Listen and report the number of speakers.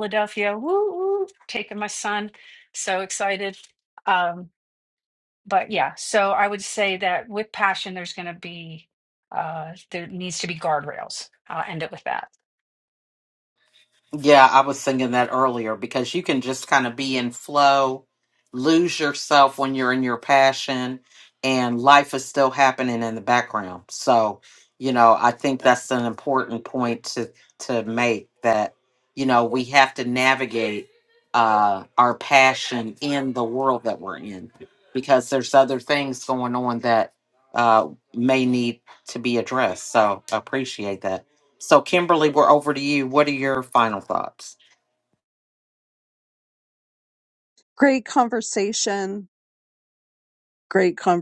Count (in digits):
3